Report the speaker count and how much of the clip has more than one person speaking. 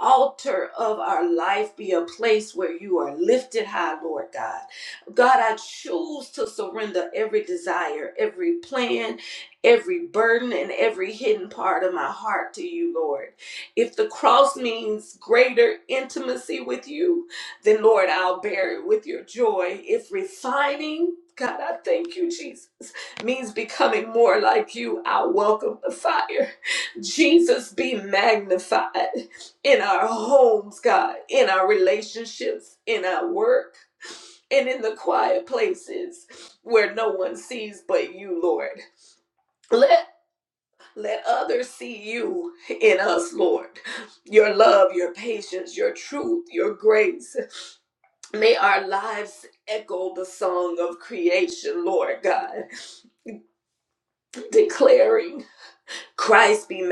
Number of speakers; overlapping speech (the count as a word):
one, no overlap